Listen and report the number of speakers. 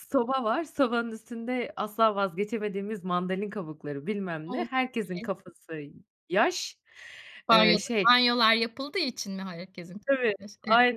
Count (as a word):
two